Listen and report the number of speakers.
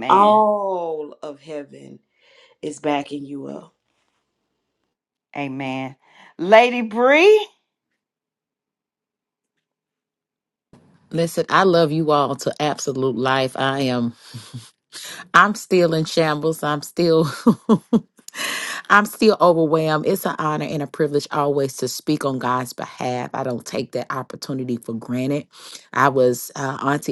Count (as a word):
three